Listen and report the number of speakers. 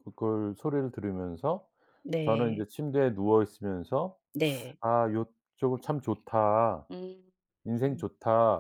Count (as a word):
two